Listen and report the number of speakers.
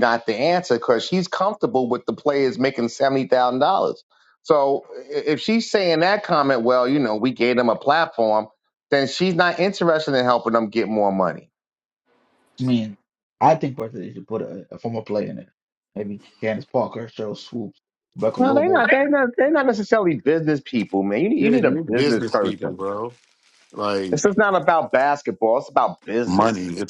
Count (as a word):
three